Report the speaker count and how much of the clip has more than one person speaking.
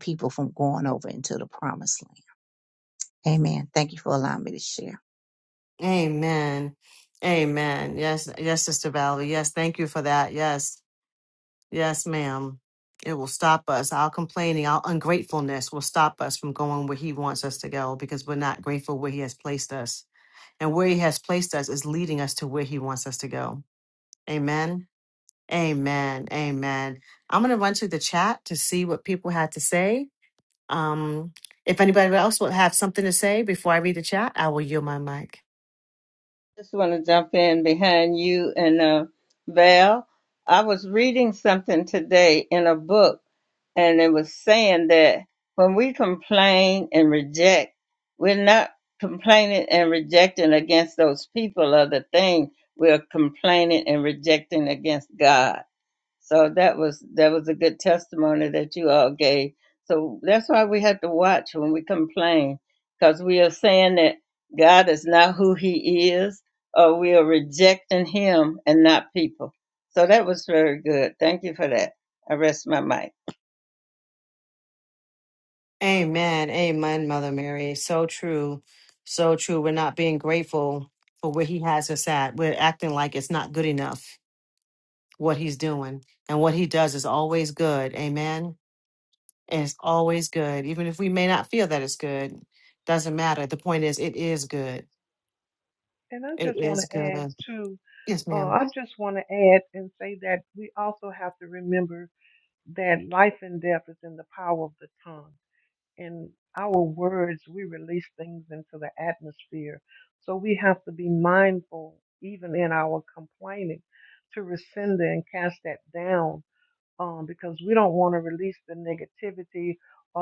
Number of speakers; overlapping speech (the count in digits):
4, about 1%